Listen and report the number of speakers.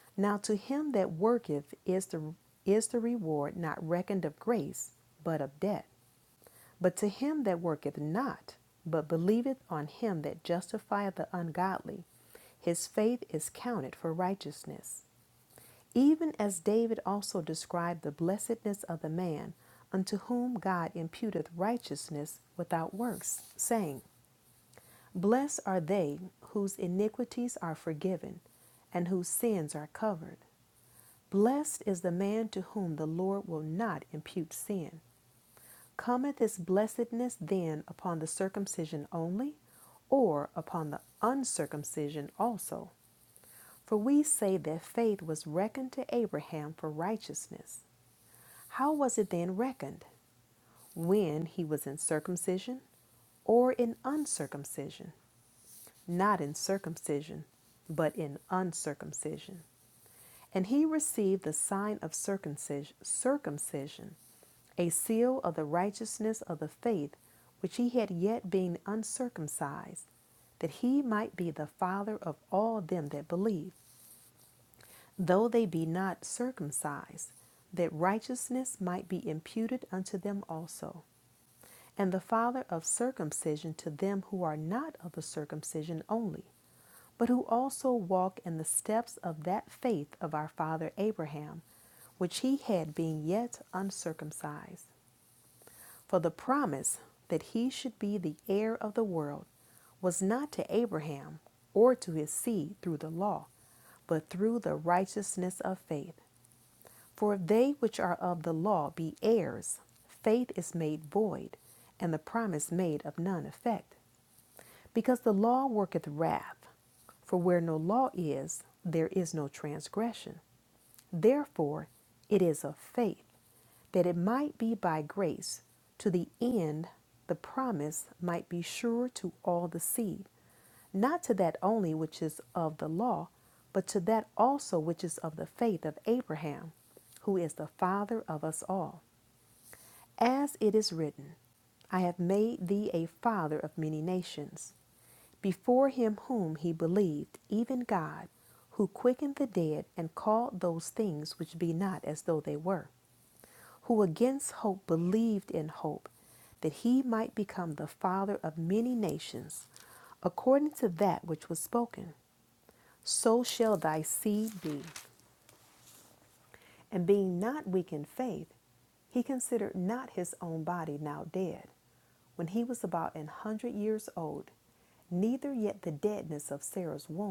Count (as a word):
one